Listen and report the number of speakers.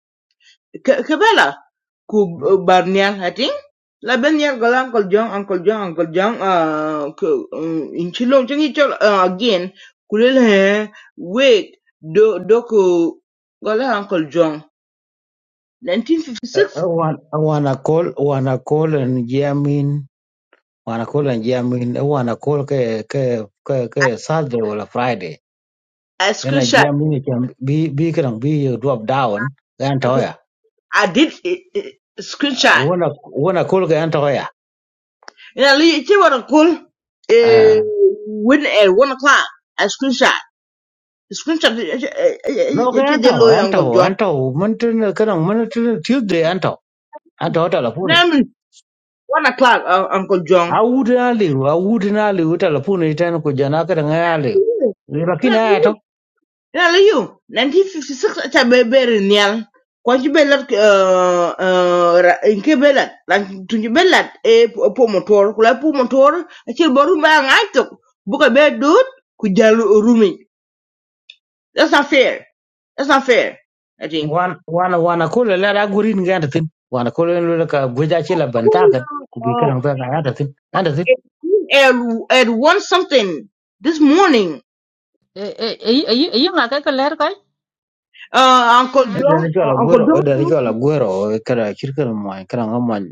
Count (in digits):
3